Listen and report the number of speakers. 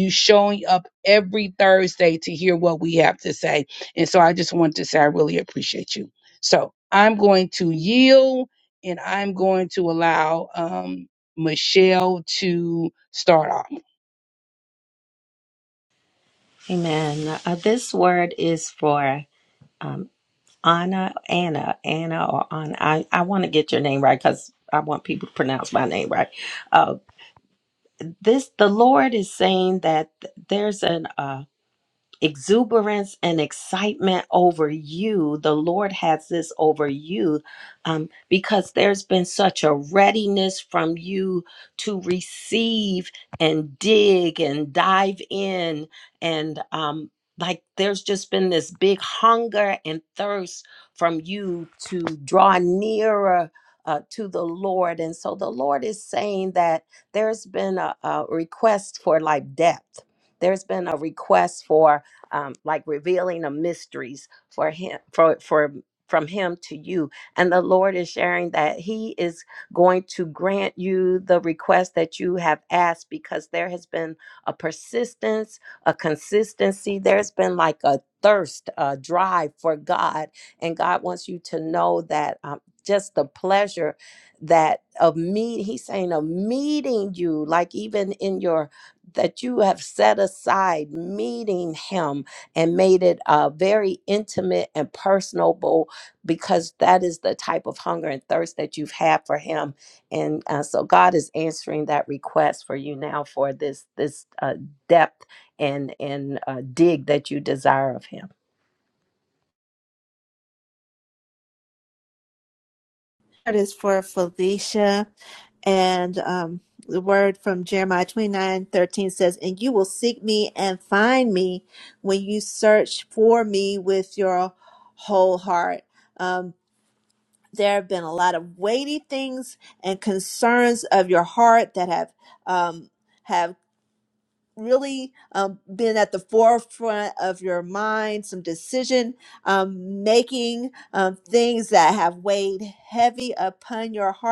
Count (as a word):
three